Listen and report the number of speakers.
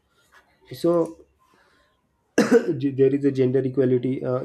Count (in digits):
1